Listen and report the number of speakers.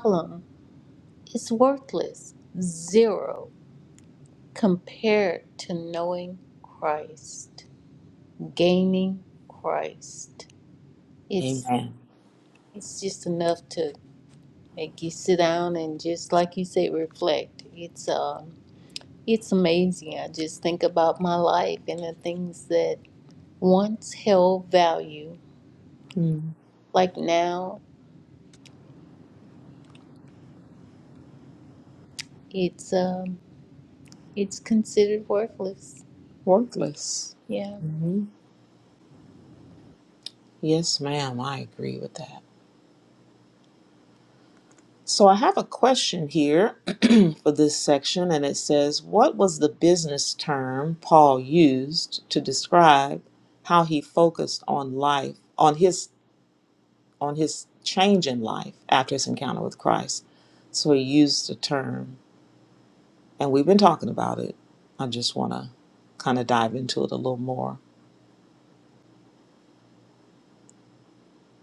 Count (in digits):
2